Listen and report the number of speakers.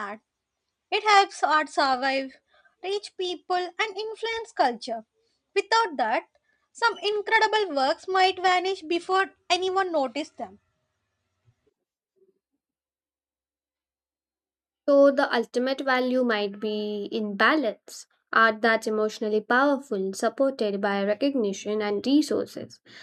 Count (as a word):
two